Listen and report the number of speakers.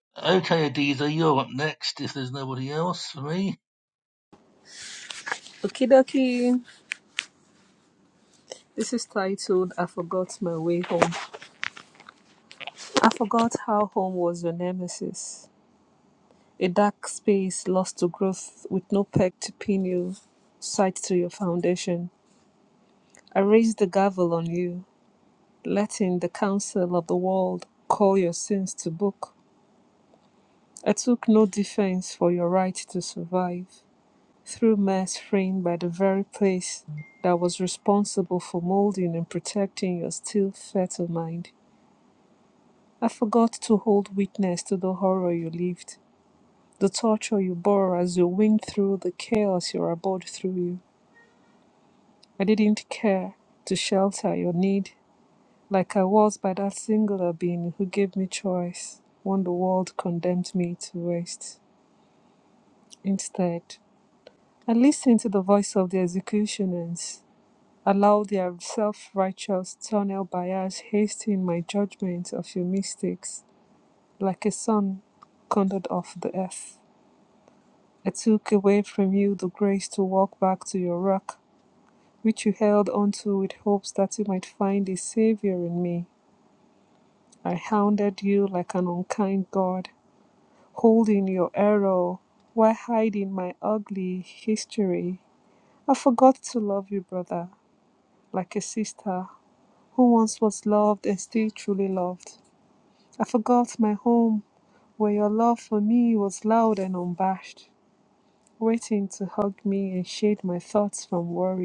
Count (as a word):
two